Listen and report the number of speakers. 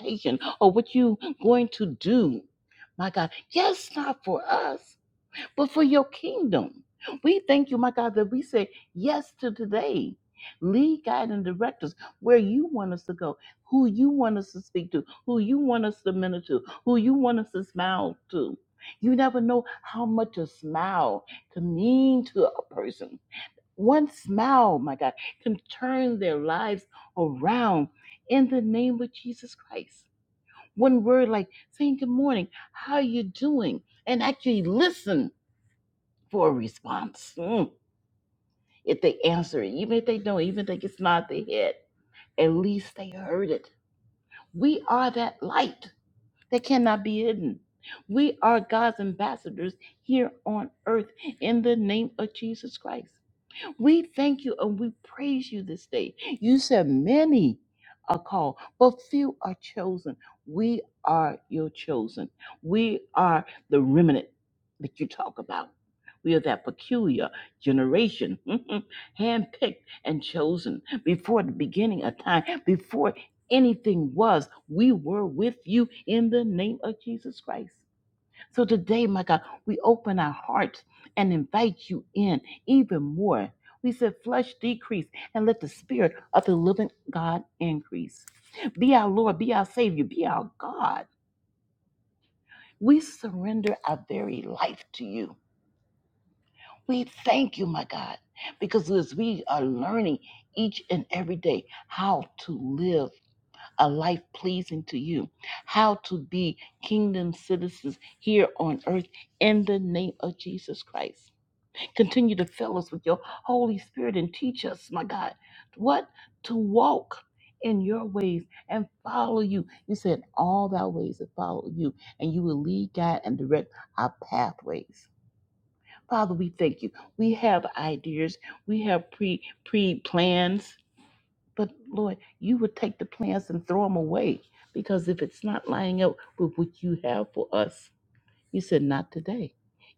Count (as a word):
one